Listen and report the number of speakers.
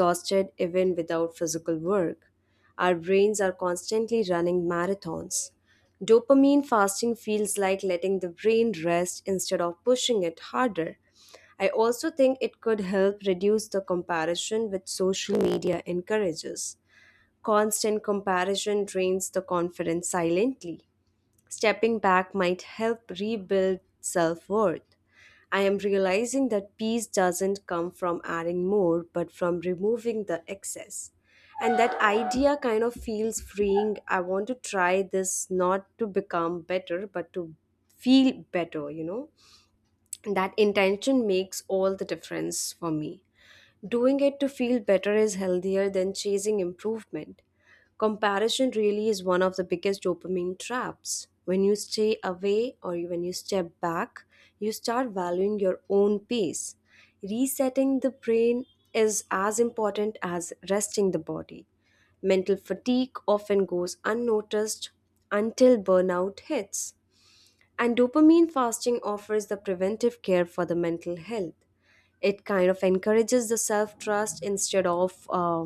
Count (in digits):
1